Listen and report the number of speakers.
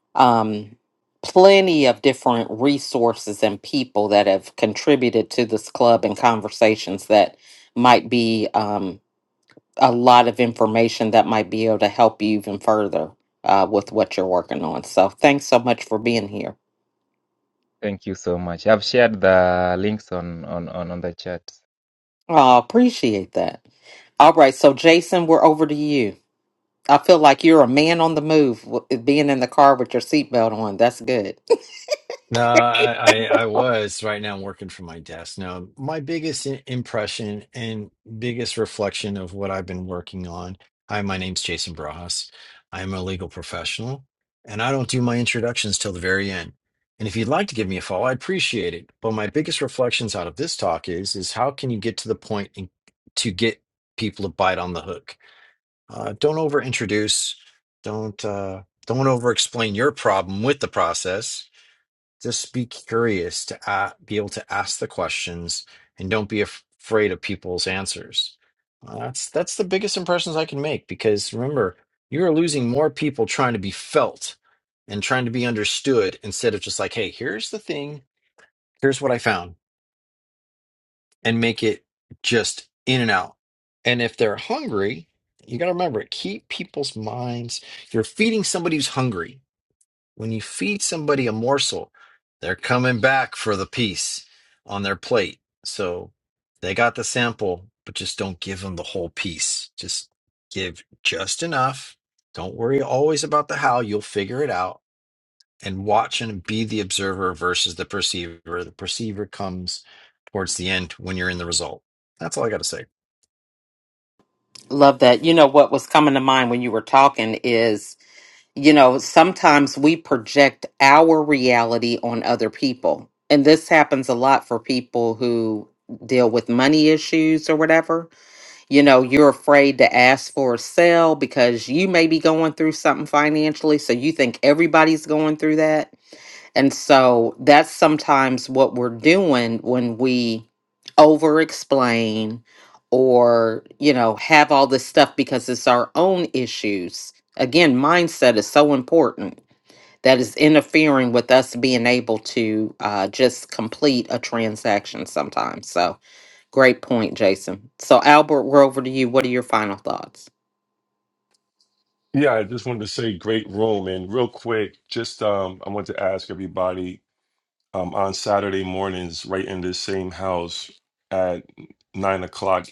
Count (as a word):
four